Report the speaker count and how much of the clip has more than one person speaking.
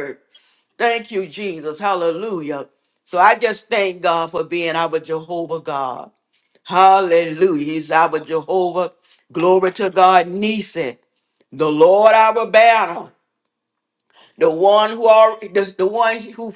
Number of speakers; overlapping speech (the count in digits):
1, no overlap